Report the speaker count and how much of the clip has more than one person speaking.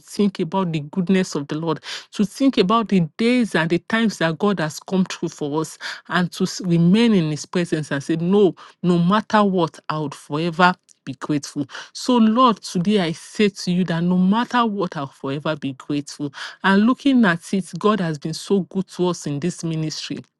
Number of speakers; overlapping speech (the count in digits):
1, no overlap